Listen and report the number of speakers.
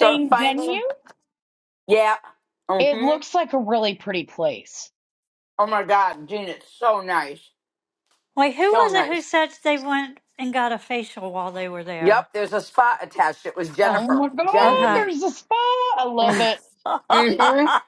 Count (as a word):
three